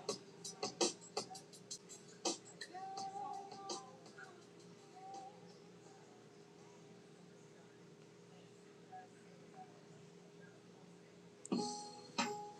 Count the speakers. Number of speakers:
0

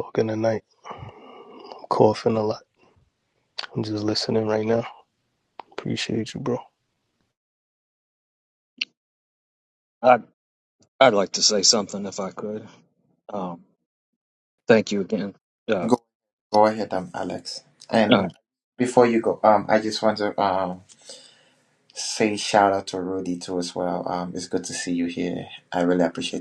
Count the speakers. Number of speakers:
3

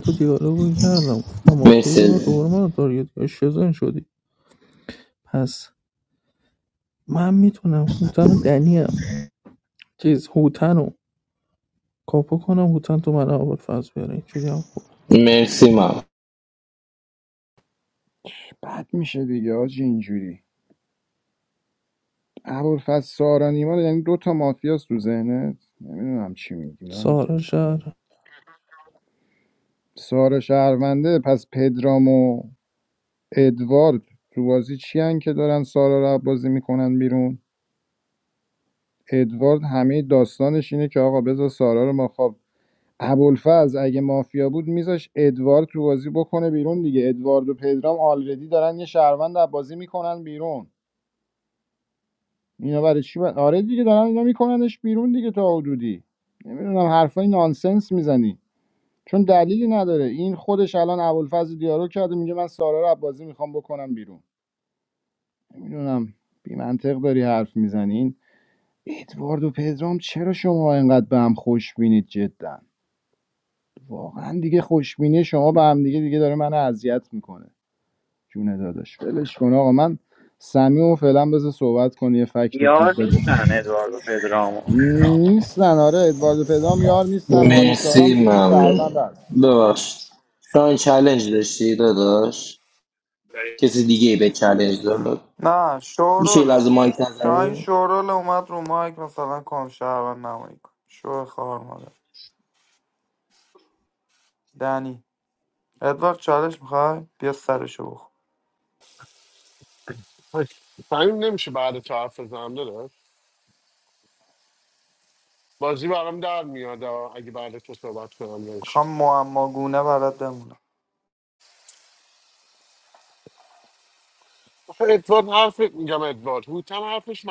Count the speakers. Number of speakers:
6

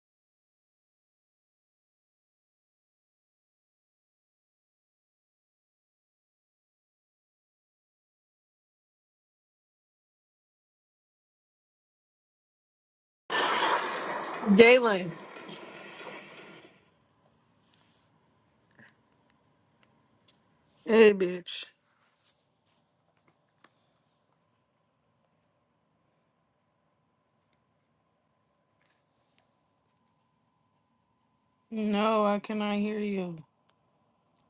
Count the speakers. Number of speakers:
1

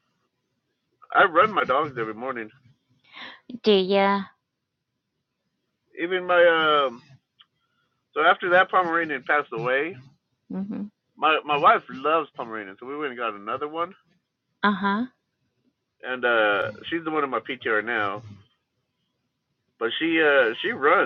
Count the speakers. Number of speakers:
2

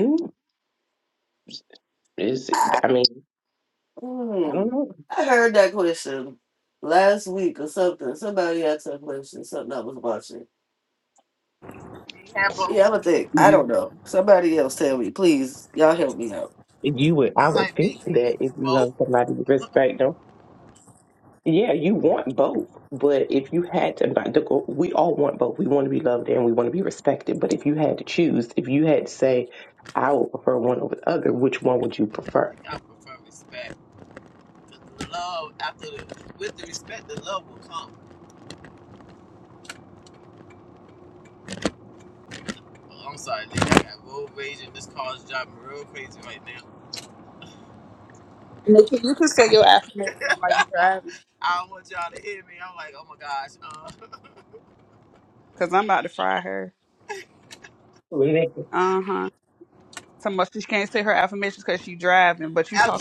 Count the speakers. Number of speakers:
4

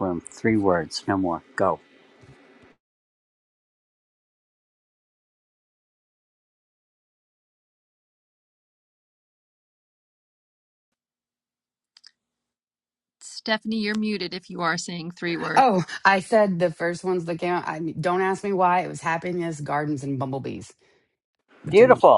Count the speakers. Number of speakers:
3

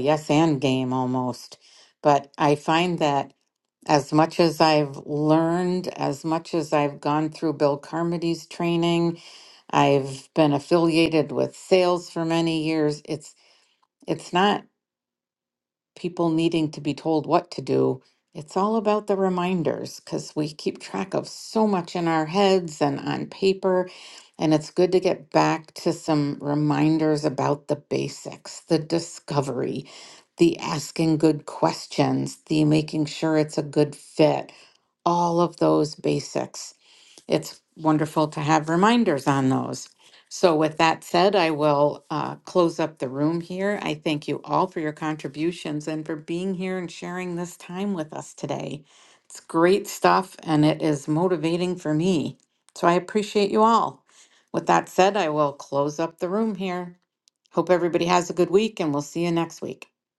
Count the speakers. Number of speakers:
1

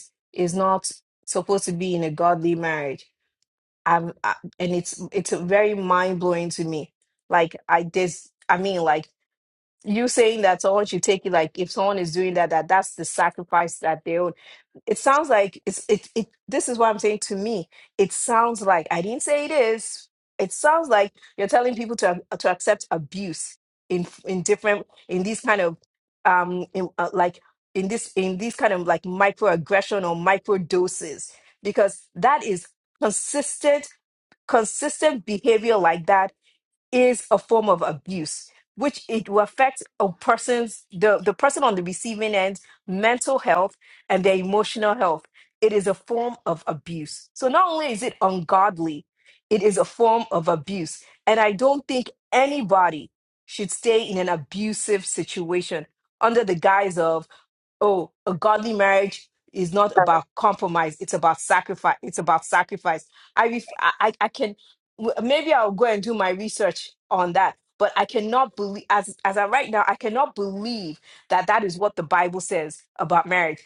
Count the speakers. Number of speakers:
1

